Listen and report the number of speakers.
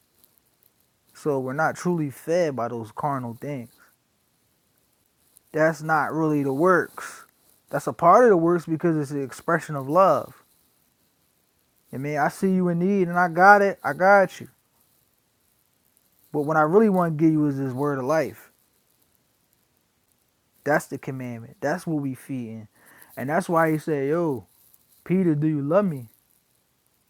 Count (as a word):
one